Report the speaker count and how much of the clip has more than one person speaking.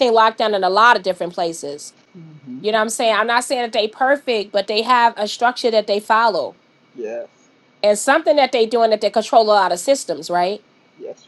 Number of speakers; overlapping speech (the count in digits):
2, under 1%